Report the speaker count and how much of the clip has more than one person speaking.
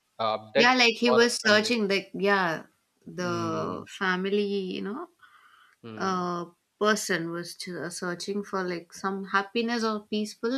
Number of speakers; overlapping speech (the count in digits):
2, about 19%